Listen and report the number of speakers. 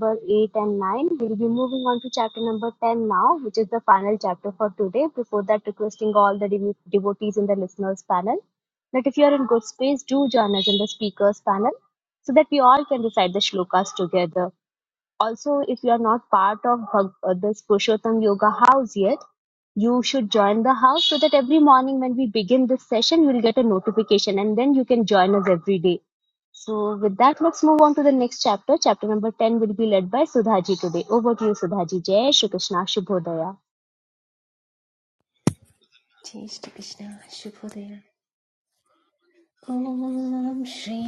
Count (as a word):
two